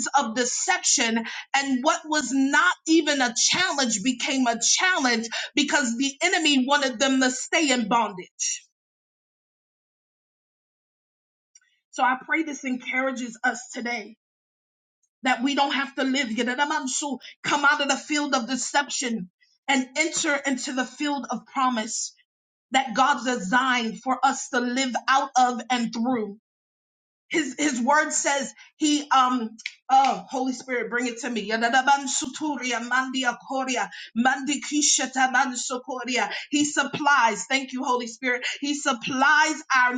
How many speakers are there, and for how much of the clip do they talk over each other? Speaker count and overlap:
1, no overlap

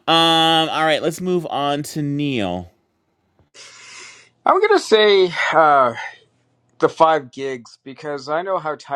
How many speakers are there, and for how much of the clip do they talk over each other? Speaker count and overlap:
2, no overlap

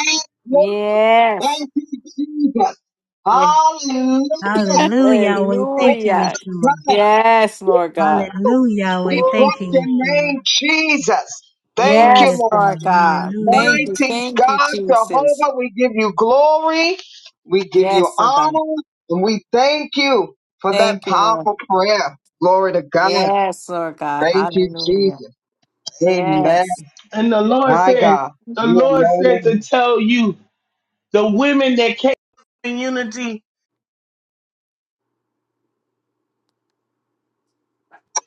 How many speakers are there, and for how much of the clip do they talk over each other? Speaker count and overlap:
4, about 29%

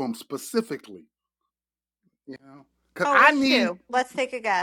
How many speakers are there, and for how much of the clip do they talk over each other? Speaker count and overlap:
2, about 14%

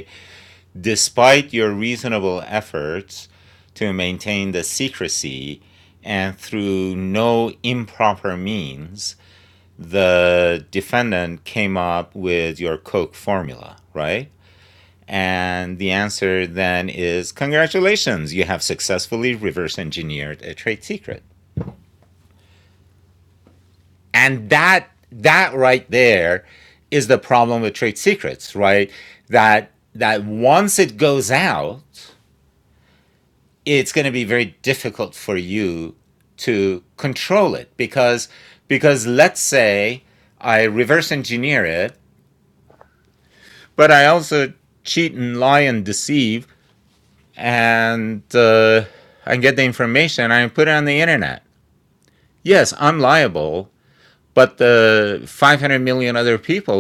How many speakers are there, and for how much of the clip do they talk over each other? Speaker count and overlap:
1, no overlap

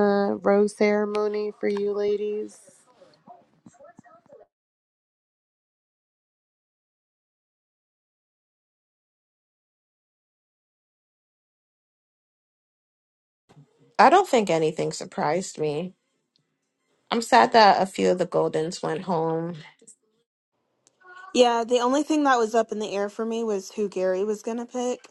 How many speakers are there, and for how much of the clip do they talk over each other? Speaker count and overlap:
3, no overlap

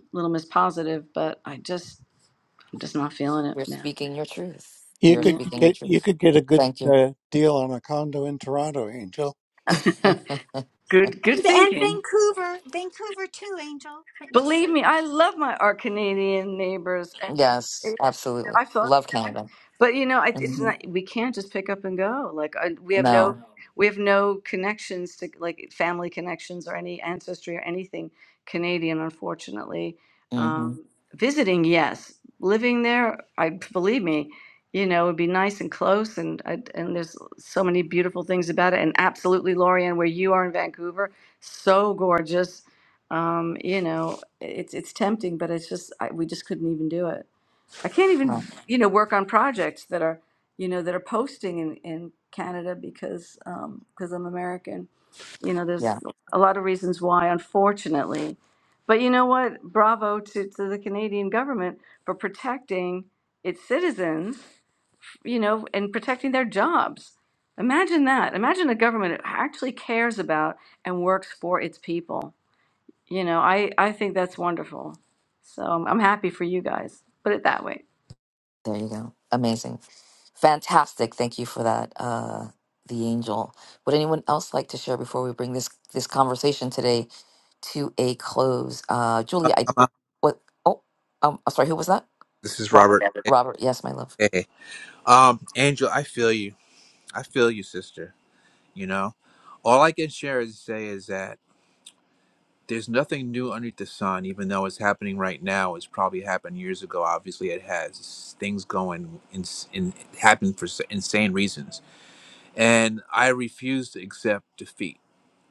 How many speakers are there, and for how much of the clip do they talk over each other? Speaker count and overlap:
5, about 4%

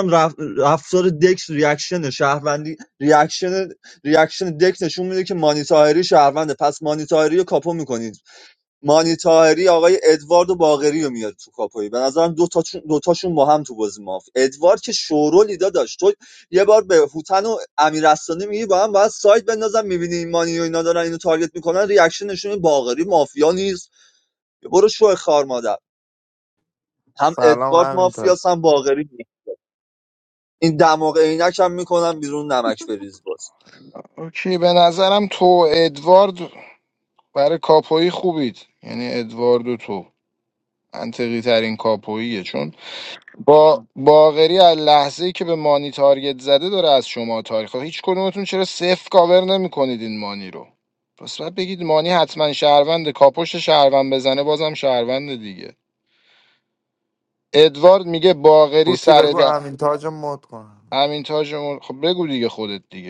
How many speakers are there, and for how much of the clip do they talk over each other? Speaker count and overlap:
3, about 3%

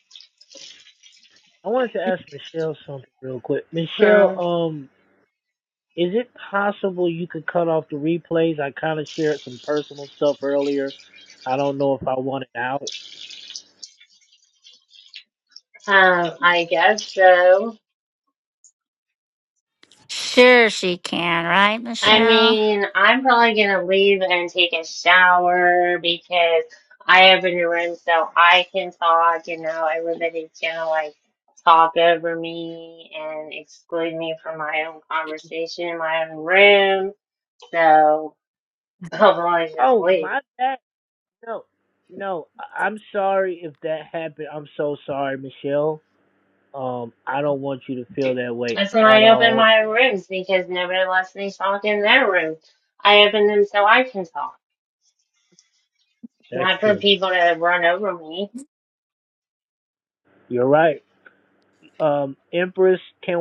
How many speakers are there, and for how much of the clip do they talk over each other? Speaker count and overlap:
3, about 5%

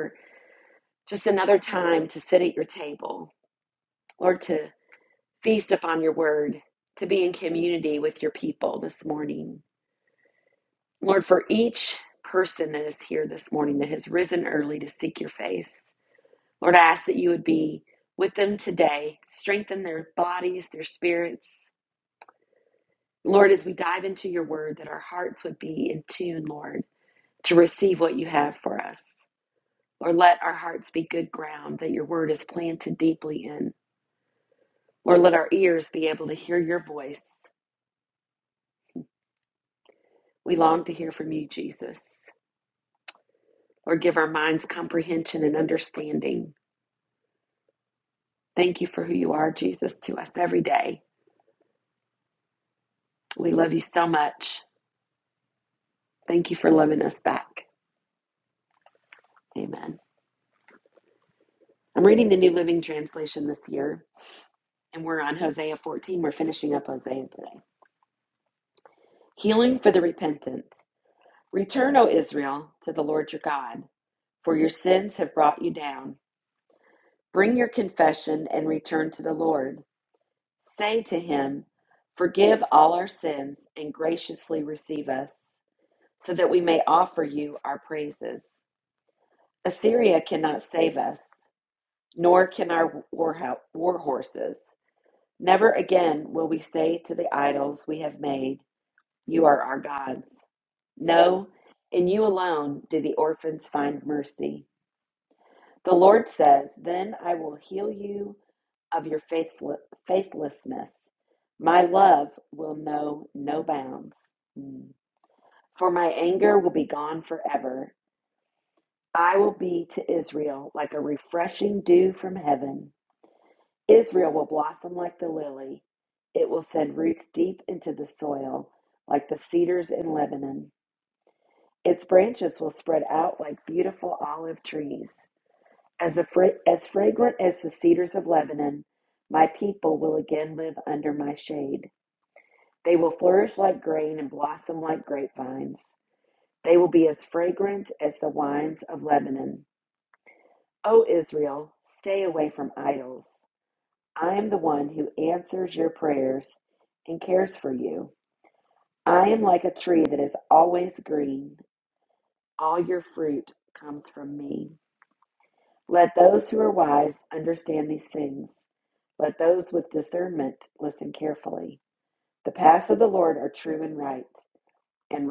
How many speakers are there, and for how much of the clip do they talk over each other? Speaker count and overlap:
1, no overlap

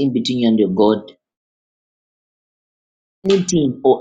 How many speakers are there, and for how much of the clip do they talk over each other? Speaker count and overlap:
1, no overlap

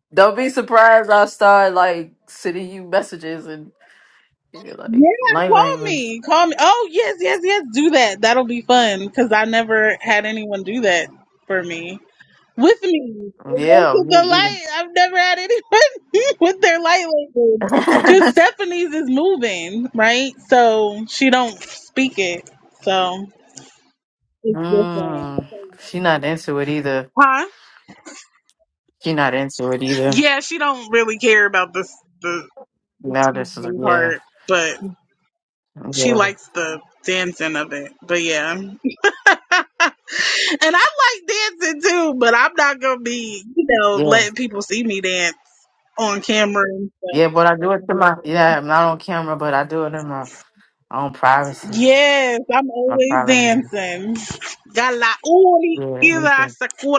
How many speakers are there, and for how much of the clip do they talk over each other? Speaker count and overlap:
2, about 11%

